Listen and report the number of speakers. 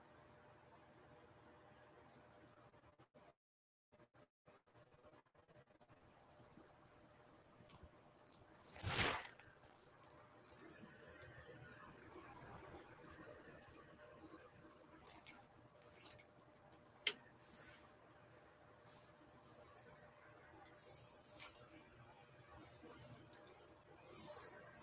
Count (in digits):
0